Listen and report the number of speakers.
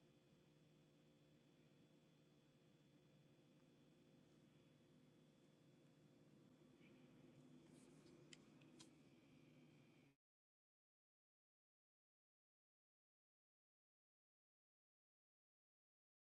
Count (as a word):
zero